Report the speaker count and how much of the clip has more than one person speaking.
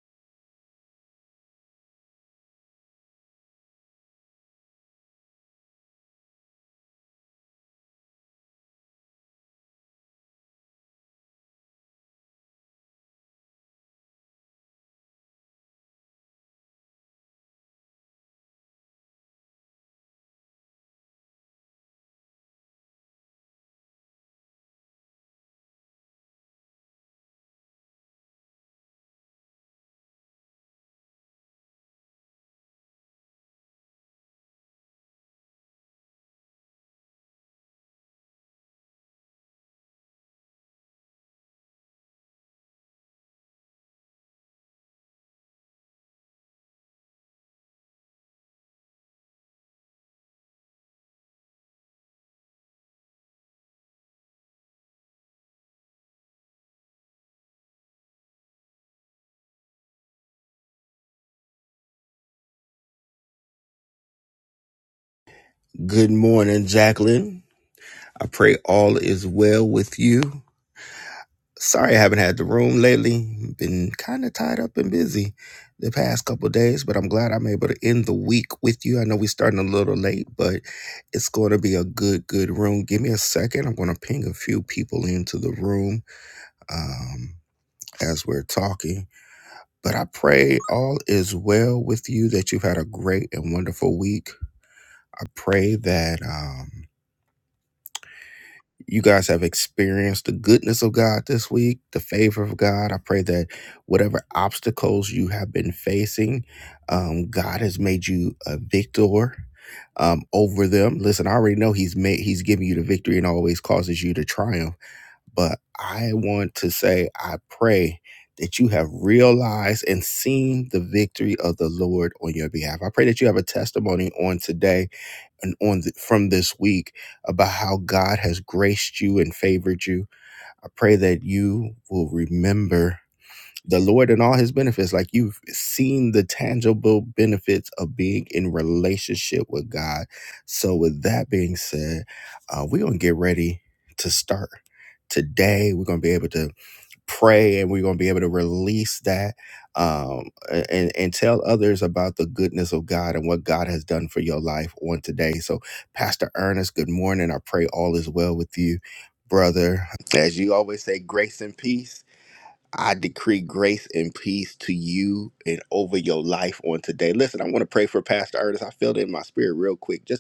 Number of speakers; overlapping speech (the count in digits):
1, no overlap